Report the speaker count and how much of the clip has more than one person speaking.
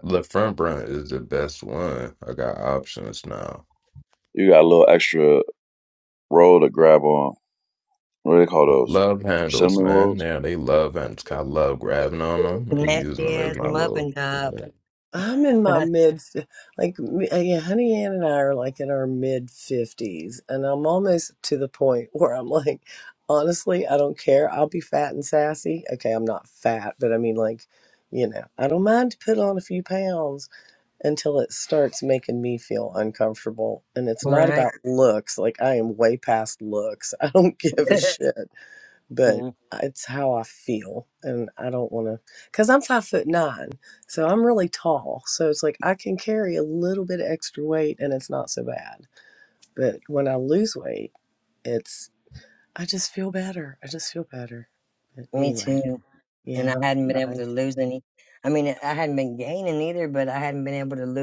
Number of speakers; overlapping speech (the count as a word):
four, about 7%